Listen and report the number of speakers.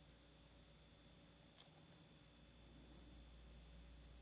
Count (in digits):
0